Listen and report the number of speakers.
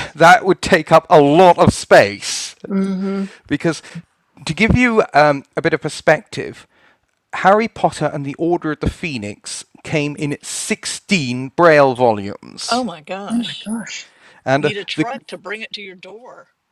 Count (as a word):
three